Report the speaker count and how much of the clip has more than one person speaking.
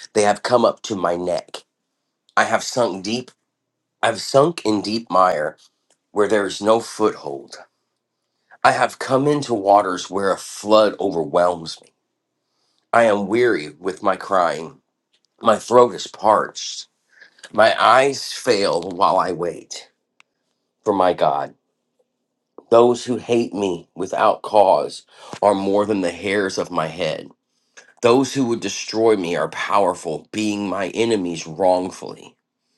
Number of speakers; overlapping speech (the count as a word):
one, no overlap